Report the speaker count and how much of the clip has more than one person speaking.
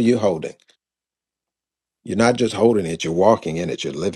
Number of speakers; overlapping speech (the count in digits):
1, no overlap